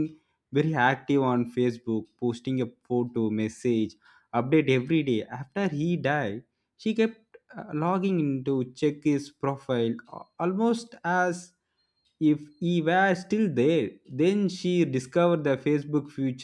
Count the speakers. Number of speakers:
one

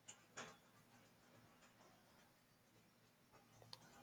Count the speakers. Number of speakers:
zero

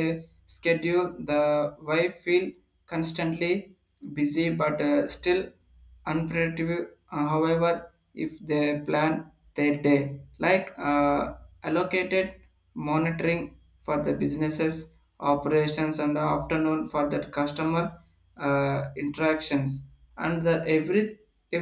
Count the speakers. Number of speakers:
one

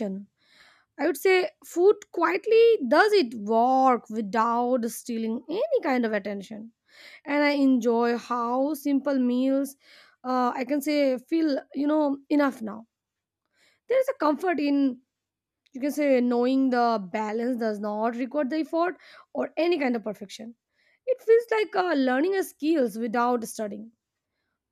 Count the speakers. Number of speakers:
one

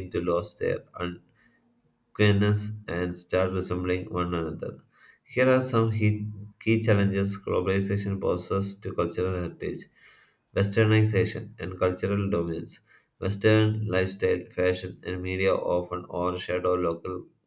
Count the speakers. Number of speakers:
one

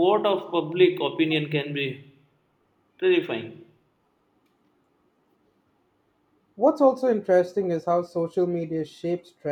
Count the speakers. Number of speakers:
two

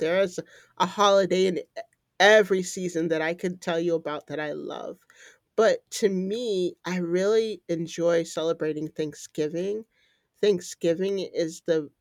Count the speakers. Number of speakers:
one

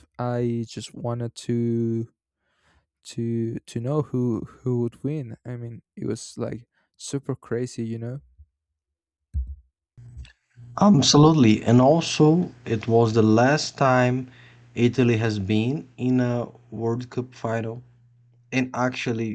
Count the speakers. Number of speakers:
two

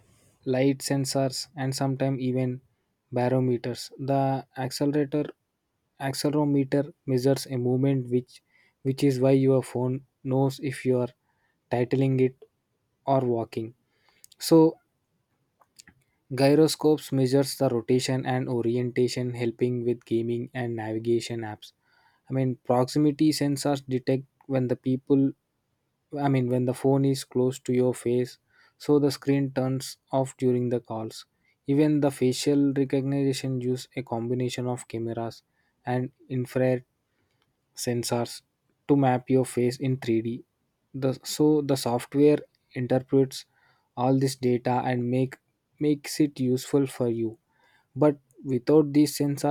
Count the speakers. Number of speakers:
one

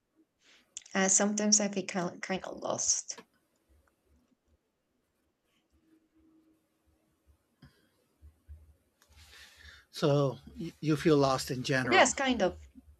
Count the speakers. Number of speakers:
two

